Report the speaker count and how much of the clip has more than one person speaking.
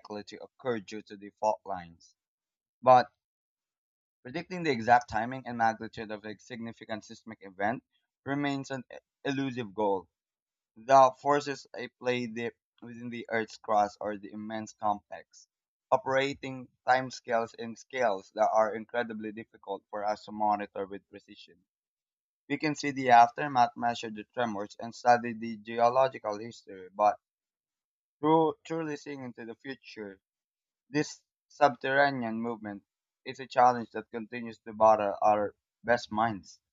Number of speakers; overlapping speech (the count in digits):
1, no overlap